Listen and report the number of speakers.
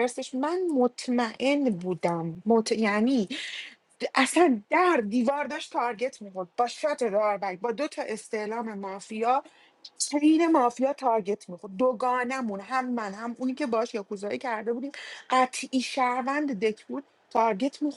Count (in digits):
1